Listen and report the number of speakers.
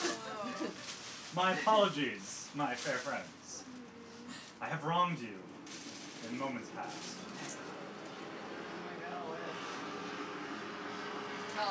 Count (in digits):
3